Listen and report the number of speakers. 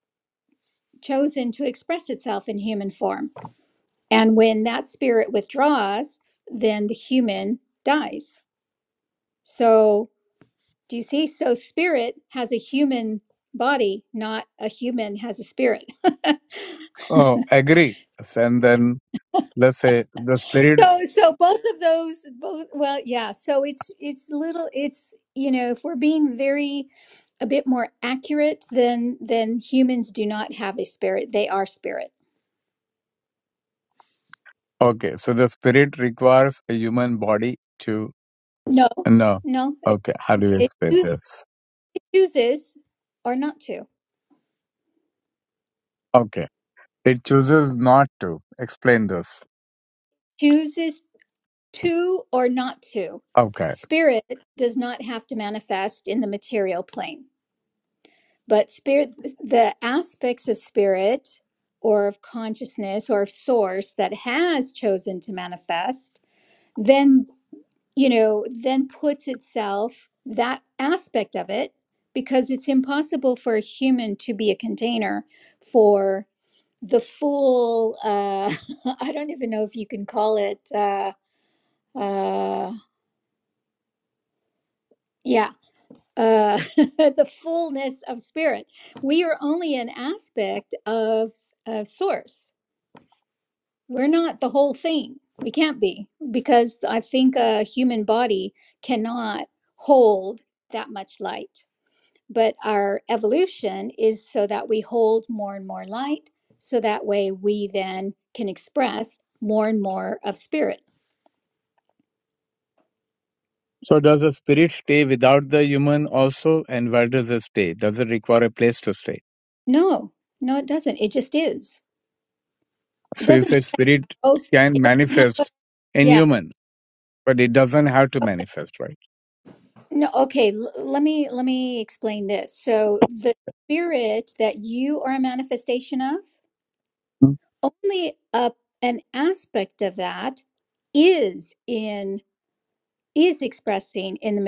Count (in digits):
2